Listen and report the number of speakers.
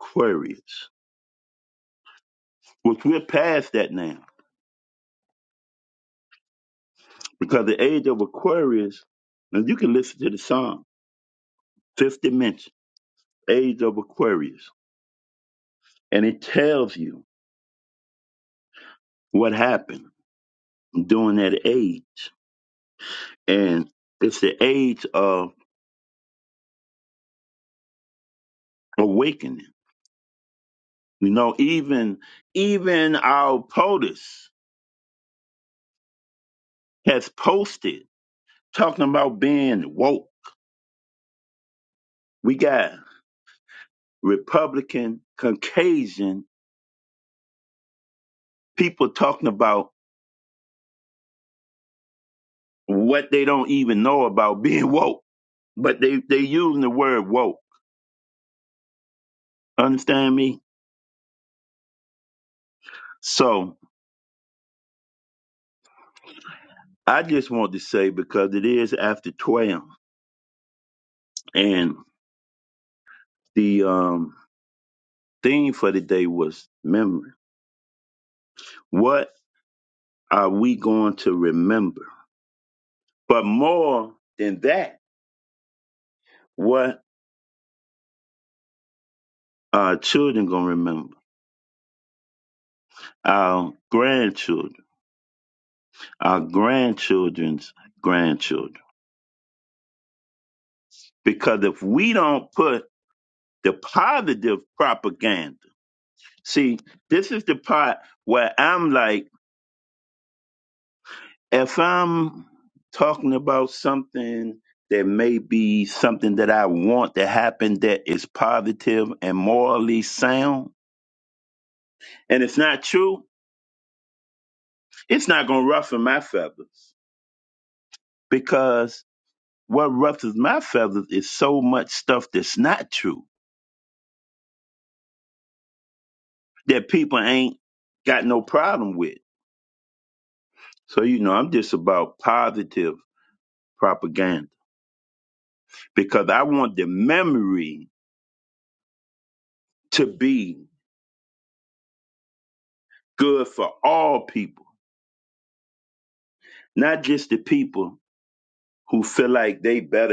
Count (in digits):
1